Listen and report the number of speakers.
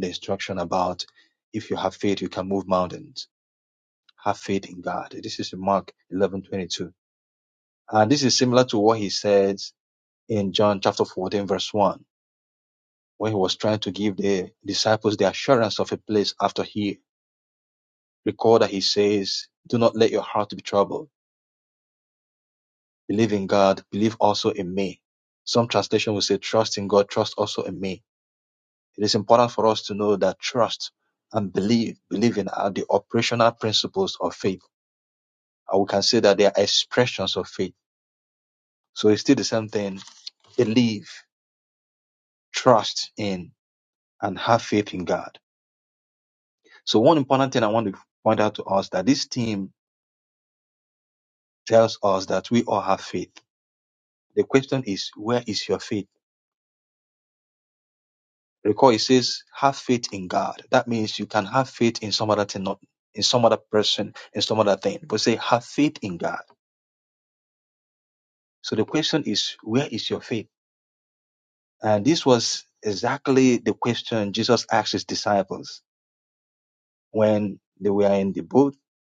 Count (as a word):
one